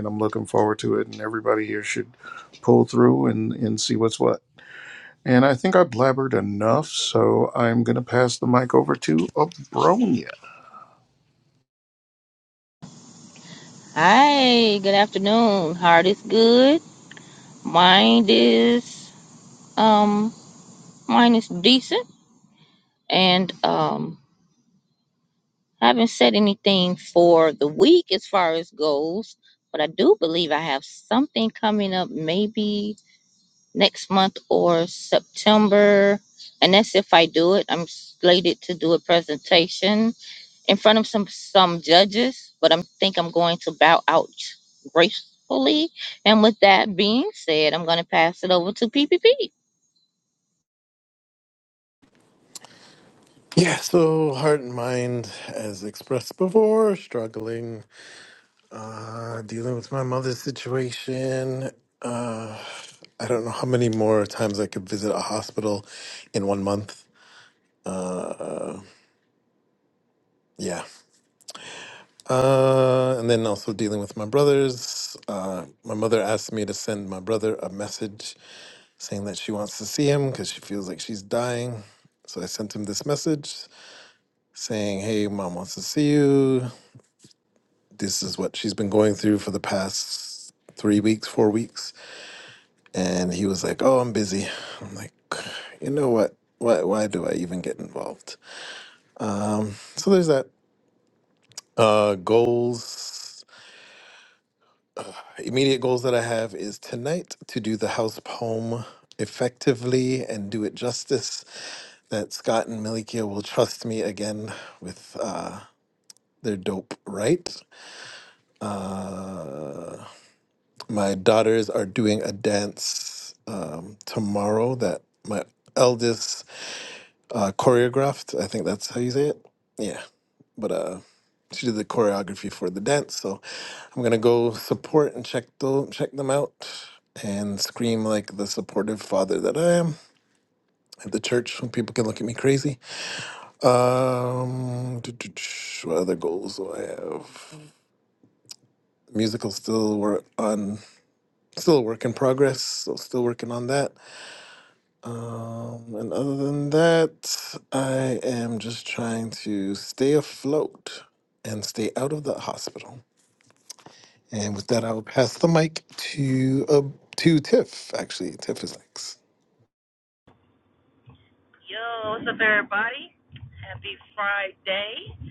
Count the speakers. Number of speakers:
four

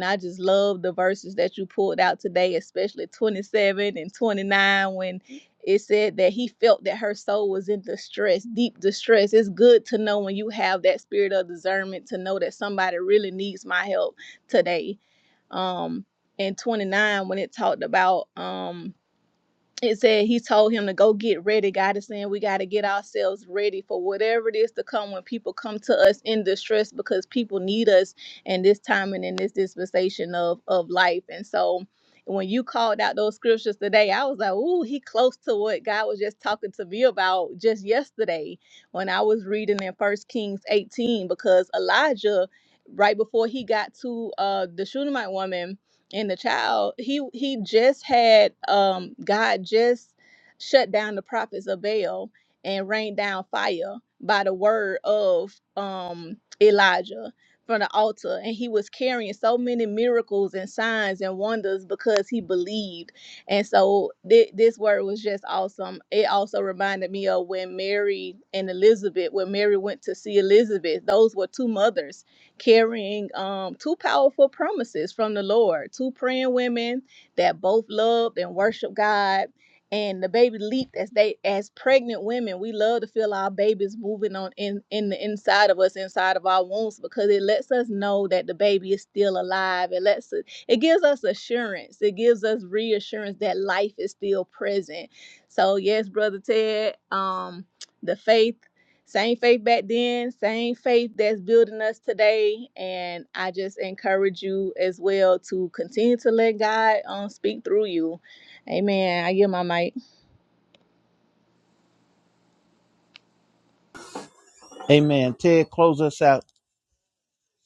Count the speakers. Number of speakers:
two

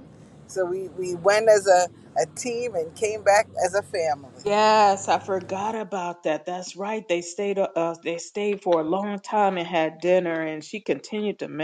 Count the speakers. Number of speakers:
two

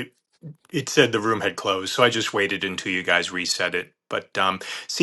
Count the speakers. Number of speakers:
one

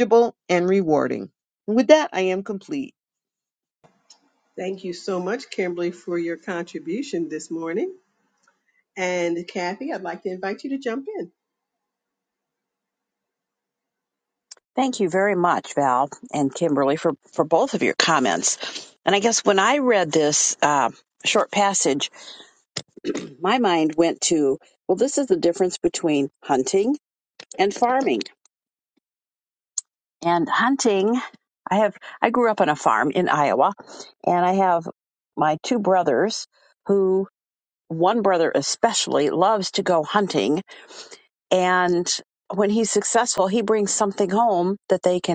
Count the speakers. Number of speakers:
three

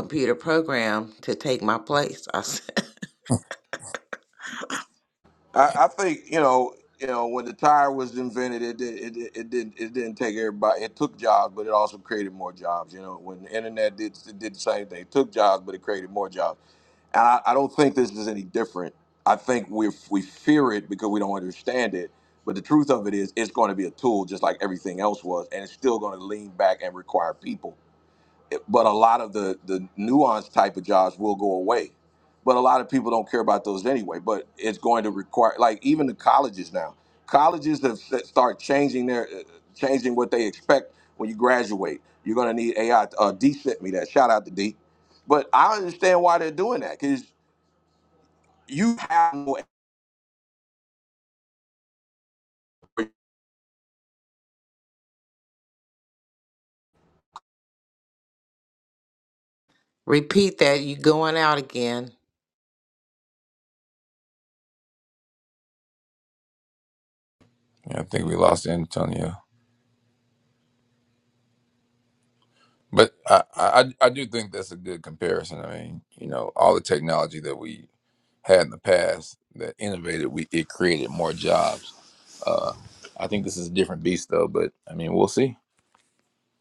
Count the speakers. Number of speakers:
three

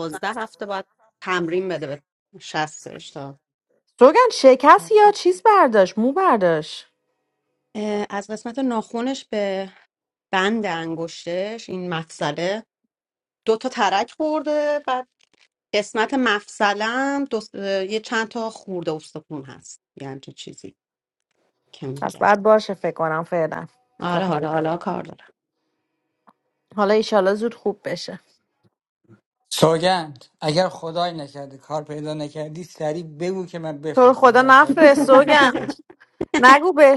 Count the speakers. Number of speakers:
three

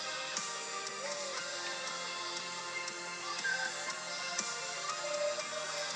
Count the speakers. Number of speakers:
zero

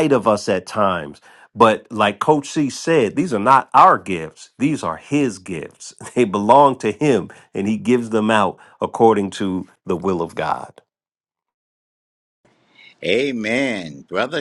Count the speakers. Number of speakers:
two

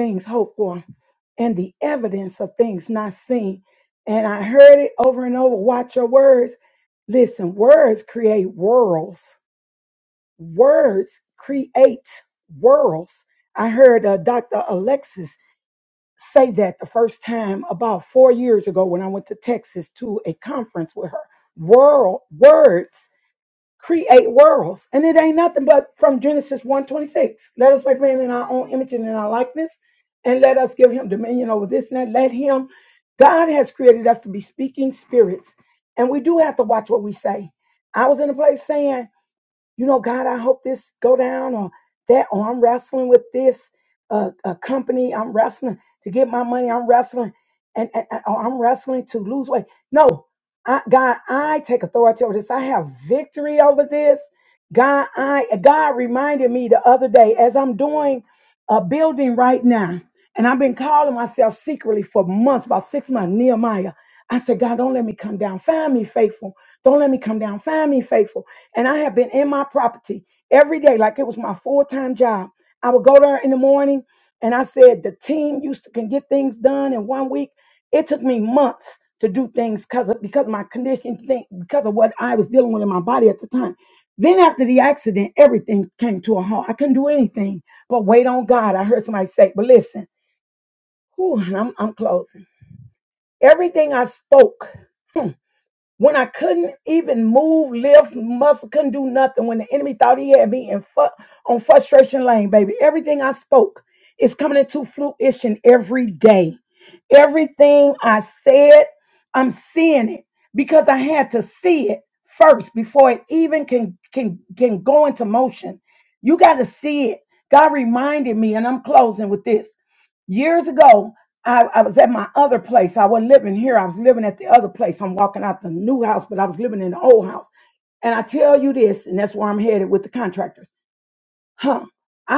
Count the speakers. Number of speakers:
one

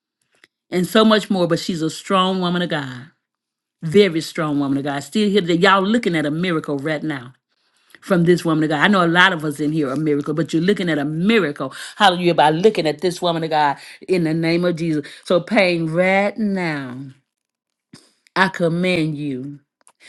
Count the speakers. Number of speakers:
one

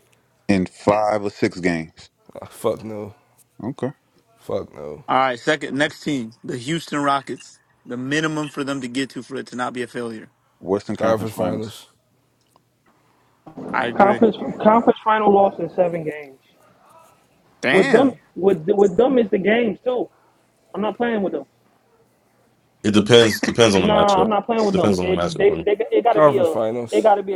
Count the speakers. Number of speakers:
five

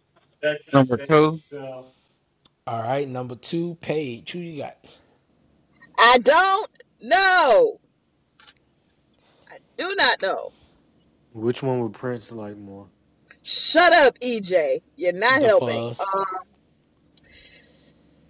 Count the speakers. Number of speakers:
four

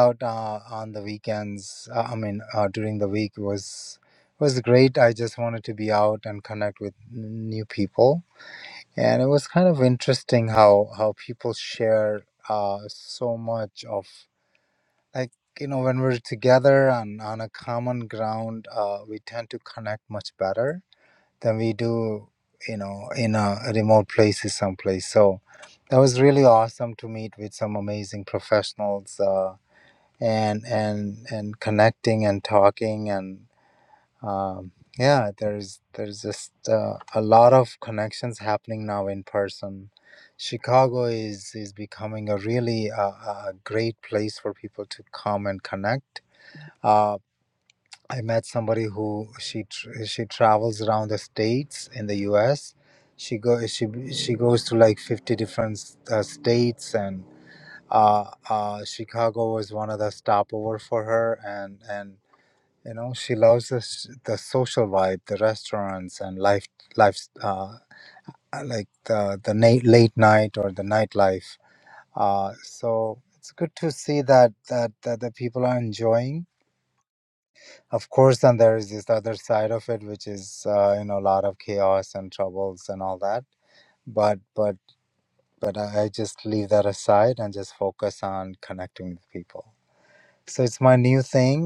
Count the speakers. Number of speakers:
one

